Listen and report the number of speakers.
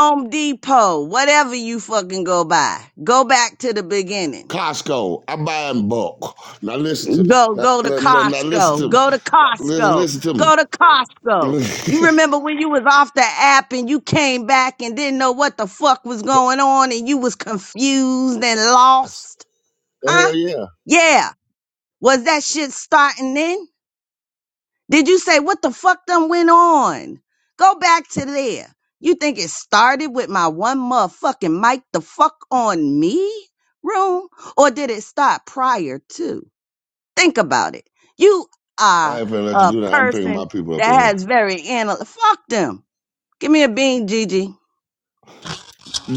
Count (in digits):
2